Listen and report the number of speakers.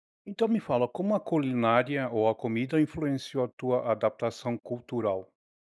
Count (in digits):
1